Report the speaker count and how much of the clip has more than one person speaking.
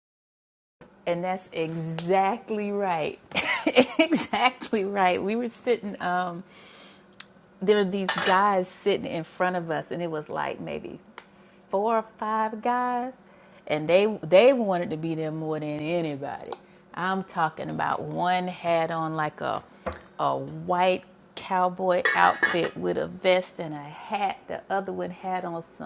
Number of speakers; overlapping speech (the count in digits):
1, no overlap